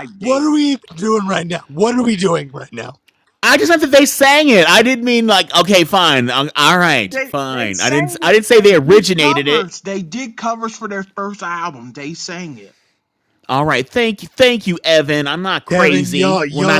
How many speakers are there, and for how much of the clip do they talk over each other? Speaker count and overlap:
three, about 24%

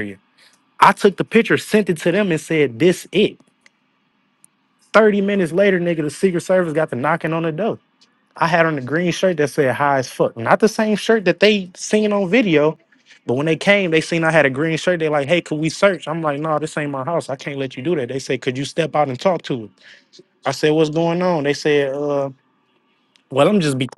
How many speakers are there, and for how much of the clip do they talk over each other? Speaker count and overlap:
one, no overlap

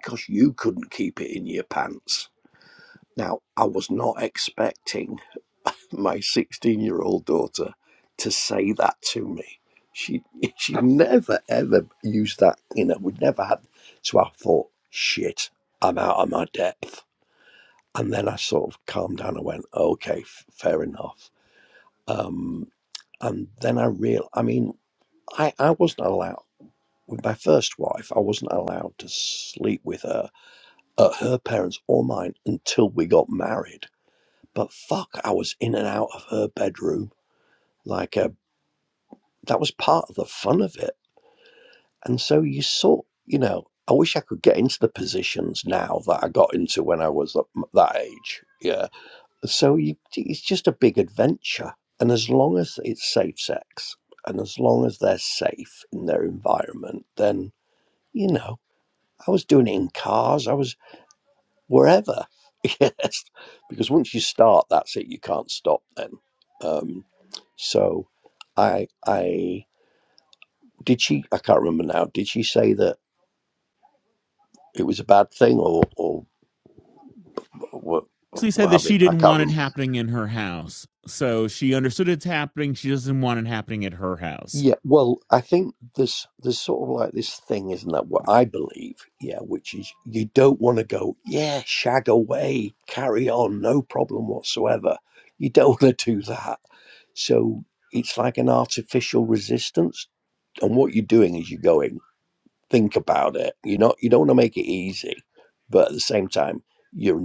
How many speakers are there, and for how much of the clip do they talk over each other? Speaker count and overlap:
two, about 1%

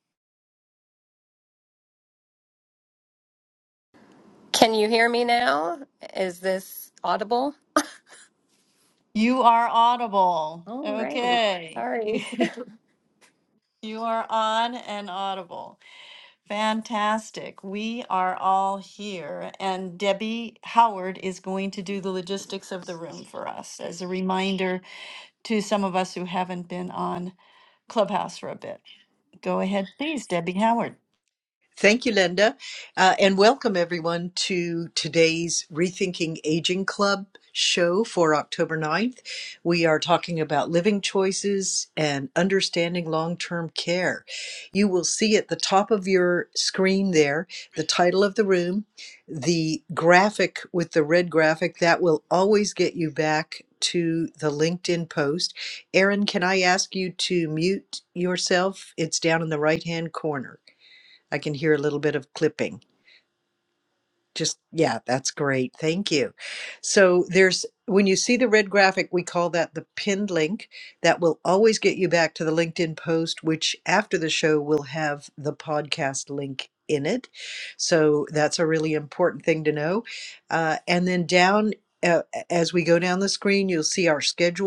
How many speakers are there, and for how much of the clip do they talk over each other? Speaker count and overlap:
three, about 1%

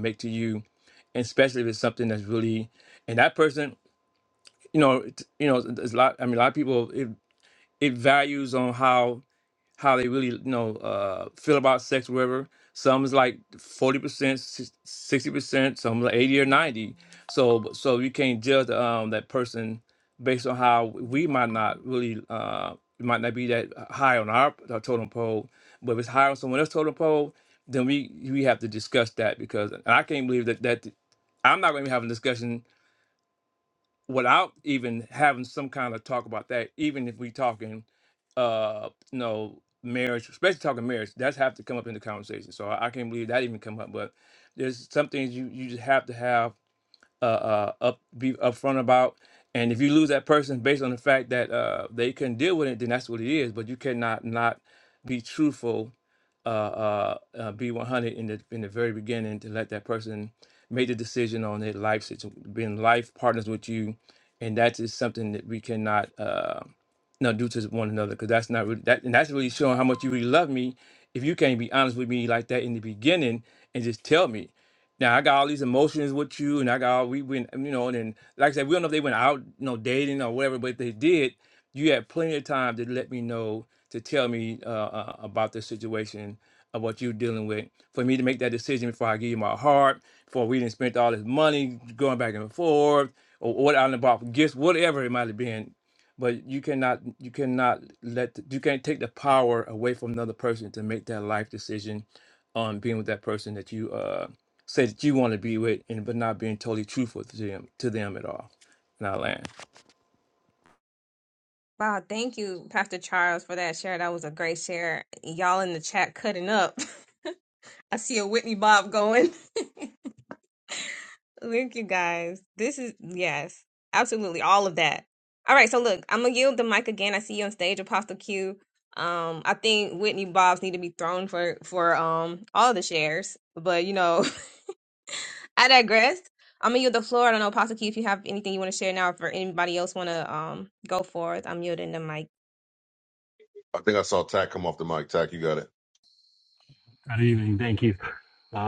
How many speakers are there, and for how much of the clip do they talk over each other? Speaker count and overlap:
four, no overlap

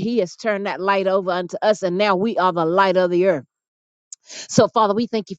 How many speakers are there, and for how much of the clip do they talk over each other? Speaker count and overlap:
one, no overlap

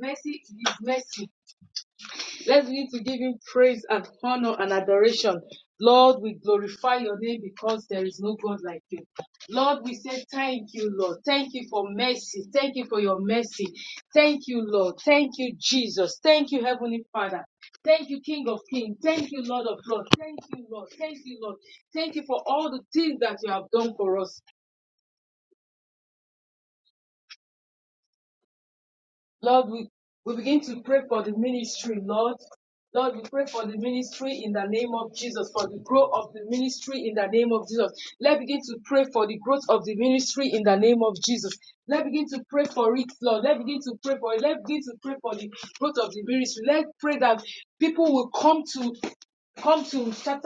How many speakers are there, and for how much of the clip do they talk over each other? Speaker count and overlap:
one, no overlap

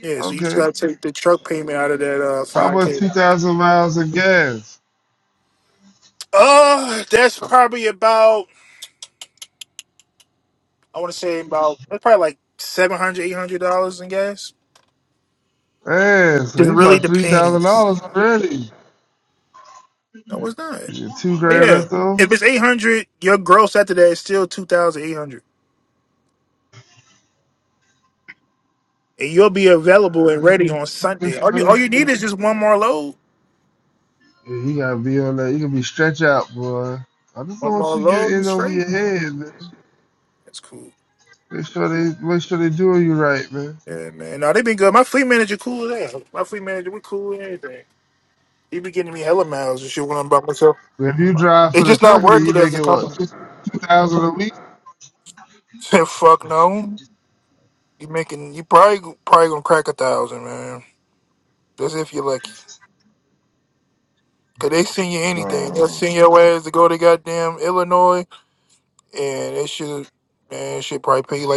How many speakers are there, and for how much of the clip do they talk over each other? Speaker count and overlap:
two, about 9%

